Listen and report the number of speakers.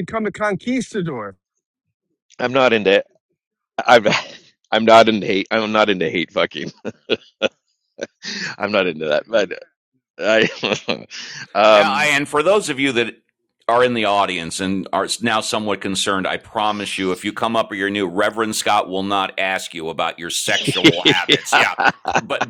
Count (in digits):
3